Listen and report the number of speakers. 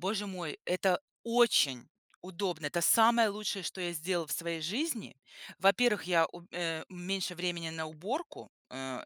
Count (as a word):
one